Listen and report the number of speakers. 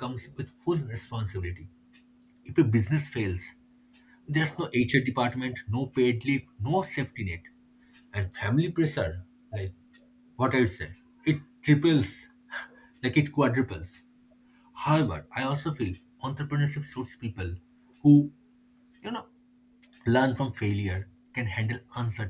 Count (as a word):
one